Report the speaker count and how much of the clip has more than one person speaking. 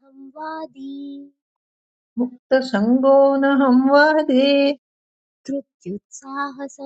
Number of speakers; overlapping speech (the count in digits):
2, no overlap